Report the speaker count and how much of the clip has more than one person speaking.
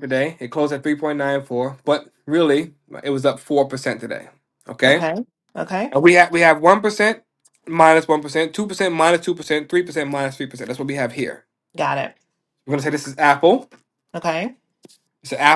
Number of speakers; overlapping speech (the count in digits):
2, about 1%